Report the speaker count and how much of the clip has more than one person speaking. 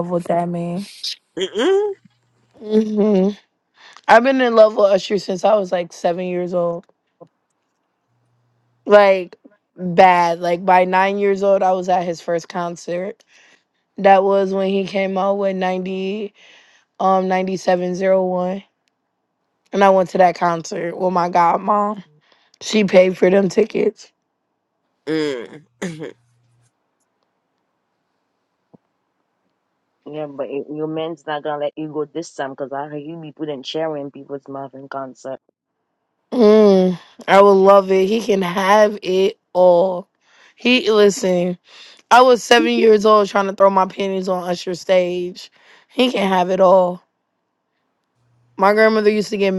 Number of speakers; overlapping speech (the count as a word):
three, no overlap